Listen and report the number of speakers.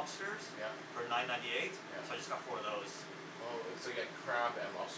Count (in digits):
2